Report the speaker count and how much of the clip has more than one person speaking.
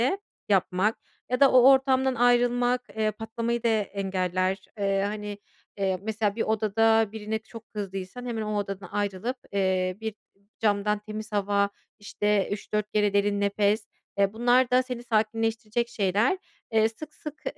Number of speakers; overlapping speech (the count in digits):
1, no overlap